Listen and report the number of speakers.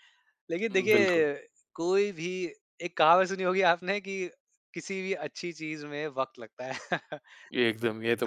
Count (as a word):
two